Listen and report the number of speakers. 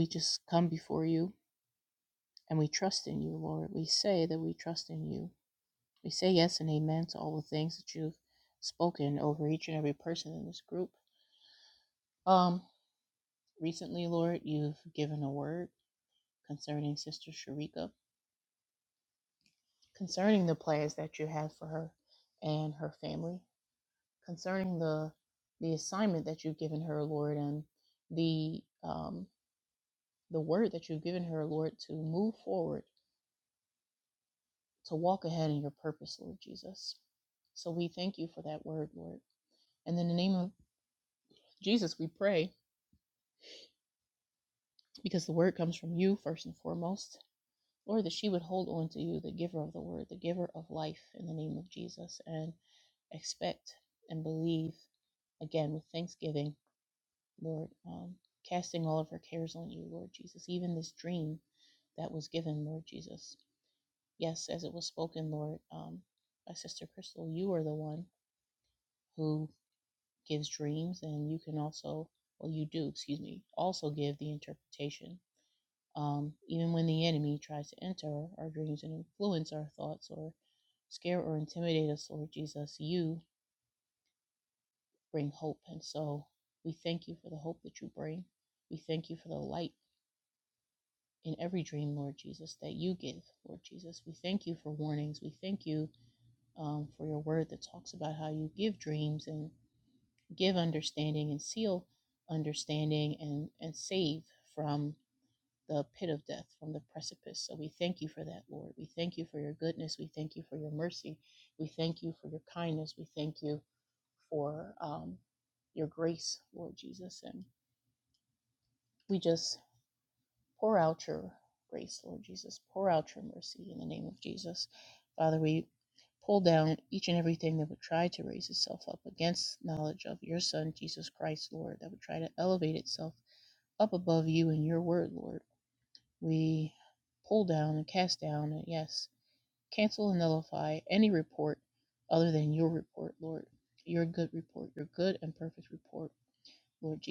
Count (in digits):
1